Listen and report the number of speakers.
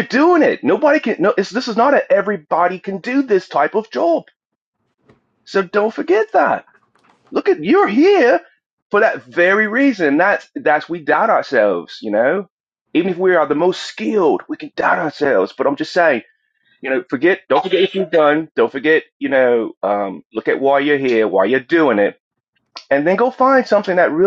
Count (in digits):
1